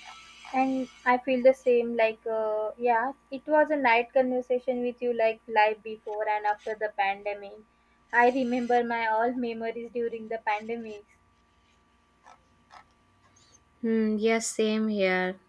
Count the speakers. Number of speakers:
two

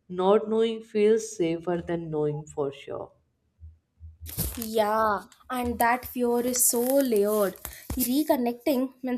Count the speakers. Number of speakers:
two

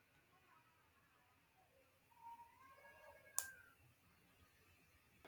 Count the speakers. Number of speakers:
zero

